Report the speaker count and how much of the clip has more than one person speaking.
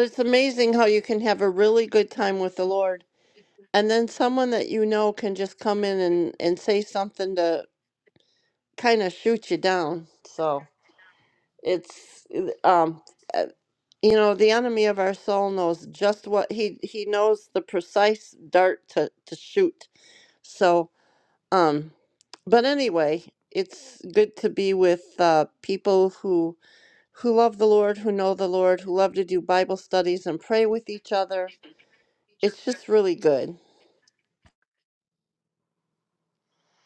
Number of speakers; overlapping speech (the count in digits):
1, no overlap